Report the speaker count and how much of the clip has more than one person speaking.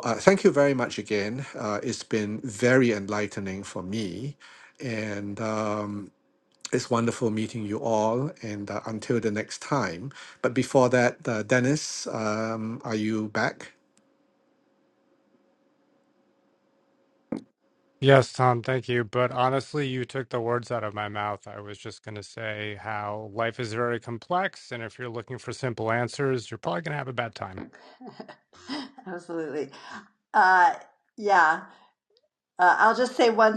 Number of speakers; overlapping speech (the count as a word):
three, no overlap